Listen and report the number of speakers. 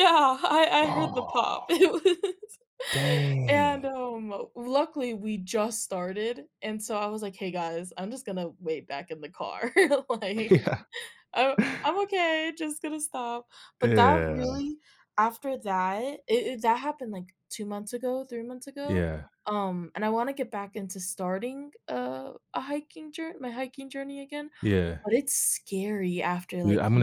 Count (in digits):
2